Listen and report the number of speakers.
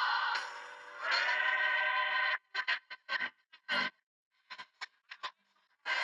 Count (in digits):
0